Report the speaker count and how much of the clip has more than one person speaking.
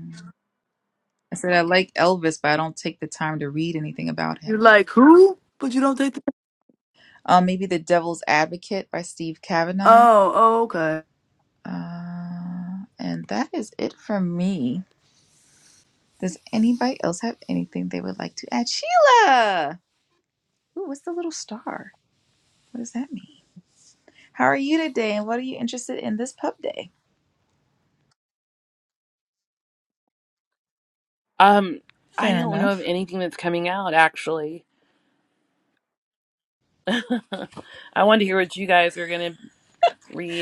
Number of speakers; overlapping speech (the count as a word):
three, about 3%